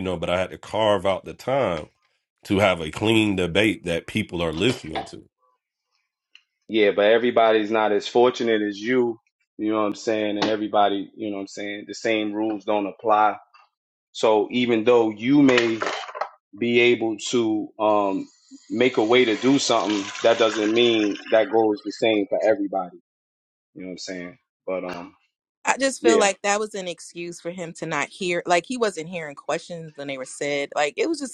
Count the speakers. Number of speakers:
three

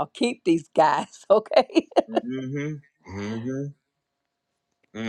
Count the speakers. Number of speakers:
two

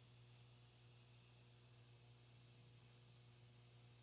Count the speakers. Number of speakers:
zero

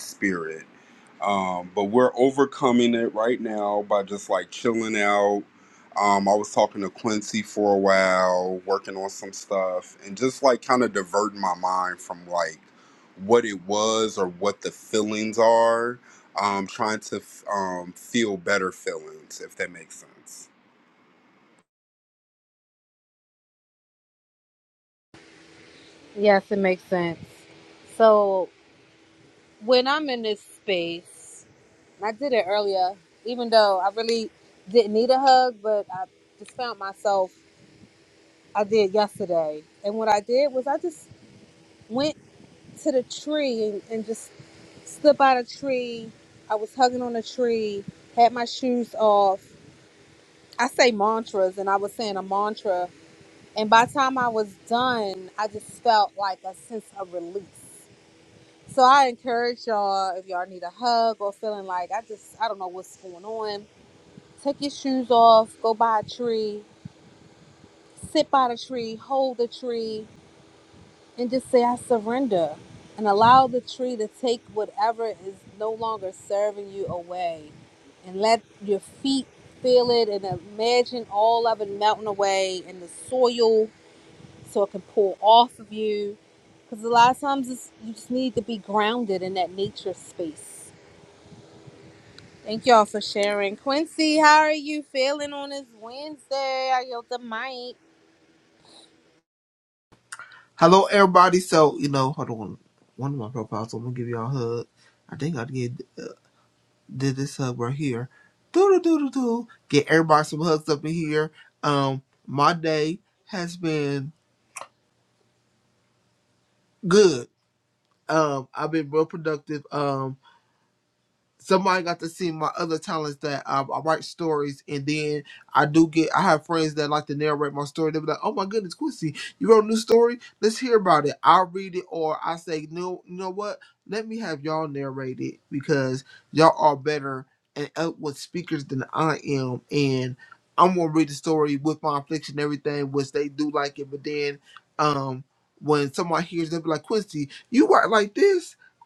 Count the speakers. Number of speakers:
three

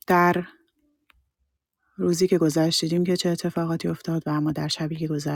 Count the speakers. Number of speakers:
one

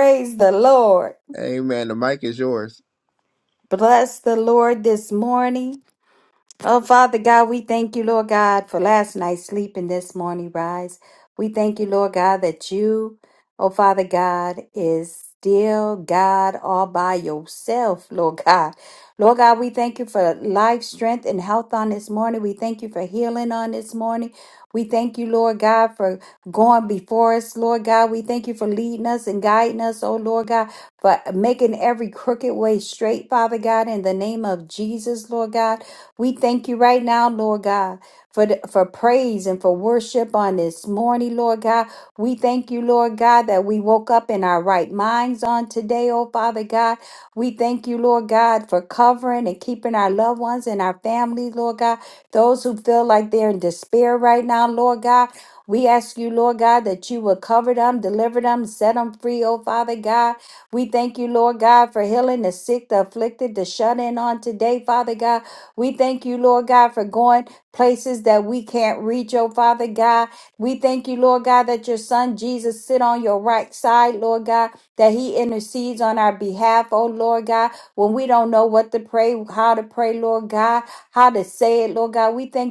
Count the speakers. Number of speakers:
two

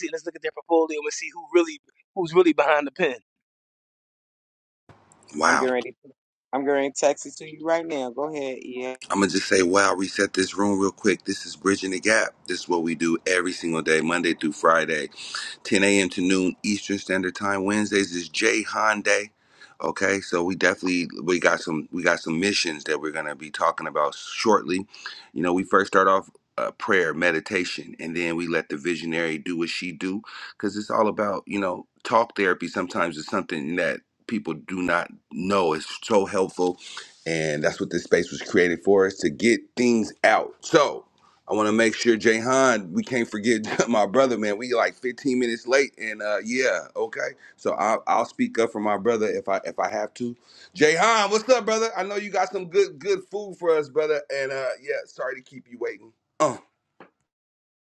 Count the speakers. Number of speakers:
three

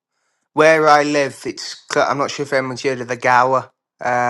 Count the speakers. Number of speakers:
one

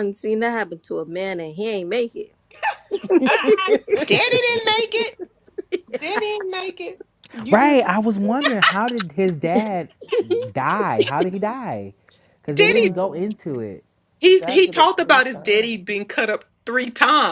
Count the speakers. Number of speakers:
three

